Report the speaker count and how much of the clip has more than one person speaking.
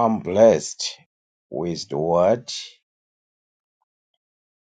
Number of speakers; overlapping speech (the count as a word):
one, no overlap